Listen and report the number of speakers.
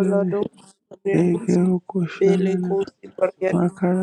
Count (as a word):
two